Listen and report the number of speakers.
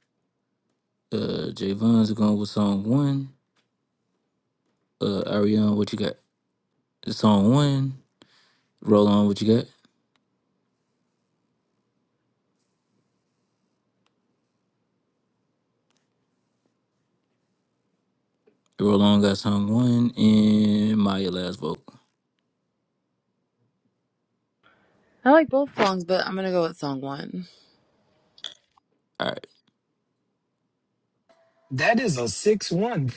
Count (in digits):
3